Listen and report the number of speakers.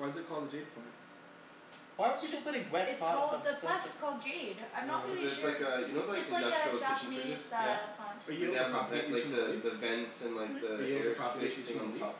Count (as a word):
four